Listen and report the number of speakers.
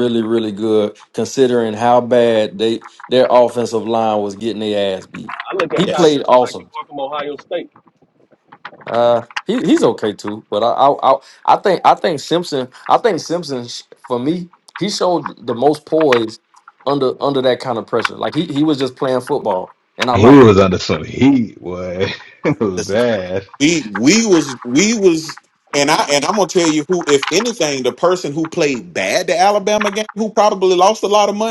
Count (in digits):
4